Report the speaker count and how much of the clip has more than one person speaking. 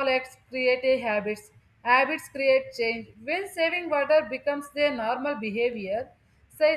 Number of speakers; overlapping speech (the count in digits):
1, no overlap